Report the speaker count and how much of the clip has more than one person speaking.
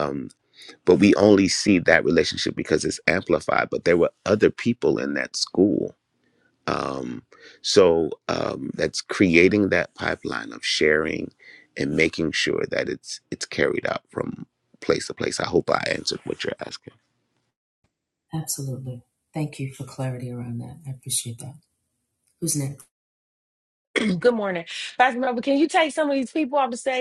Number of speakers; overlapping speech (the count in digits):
3, no overlap